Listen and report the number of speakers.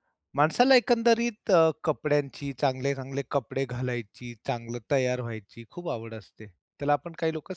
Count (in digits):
1